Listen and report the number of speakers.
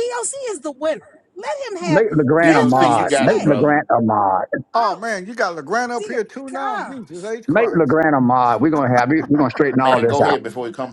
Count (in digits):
4